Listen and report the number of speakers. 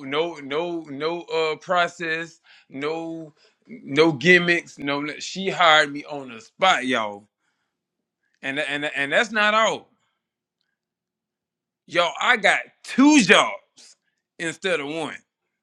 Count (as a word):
one